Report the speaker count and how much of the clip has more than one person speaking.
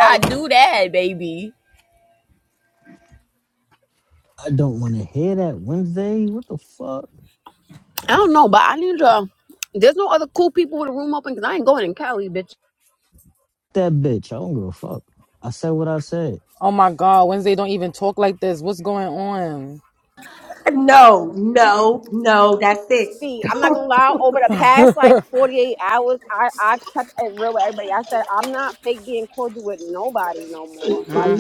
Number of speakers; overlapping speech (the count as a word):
five, about 6%